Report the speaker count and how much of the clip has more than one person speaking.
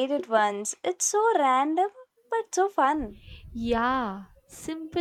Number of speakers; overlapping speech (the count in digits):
2, no overlap